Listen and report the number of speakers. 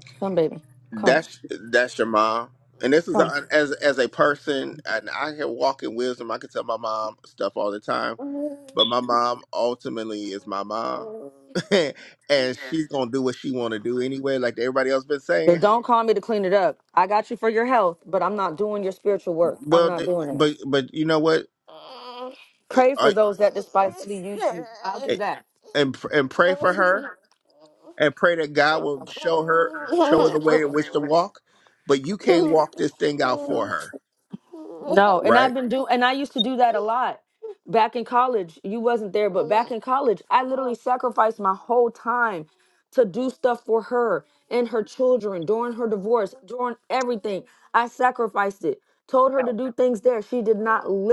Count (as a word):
two